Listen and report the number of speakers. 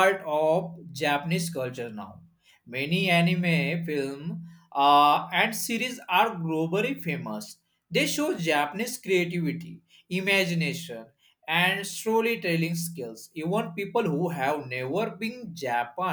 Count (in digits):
1